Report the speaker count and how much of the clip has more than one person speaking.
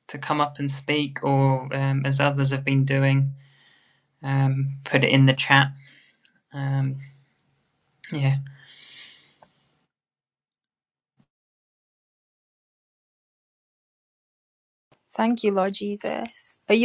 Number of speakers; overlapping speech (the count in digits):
2, no overlap